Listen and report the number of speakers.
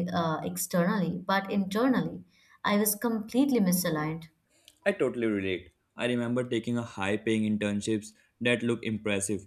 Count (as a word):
two